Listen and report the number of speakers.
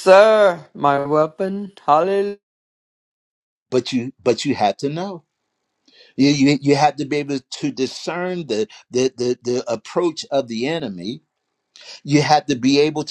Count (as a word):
two